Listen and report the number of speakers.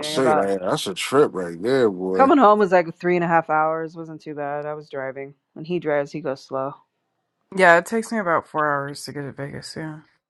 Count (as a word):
three